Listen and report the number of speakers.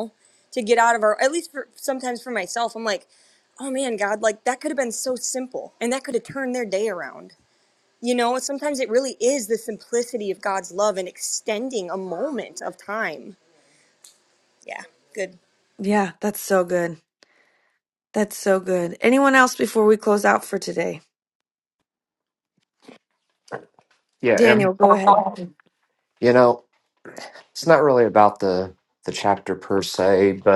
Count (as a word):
three